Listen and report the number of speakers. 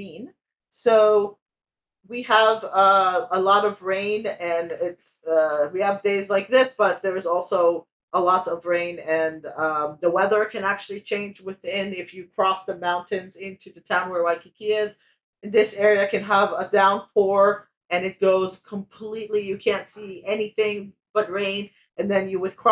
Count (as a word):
one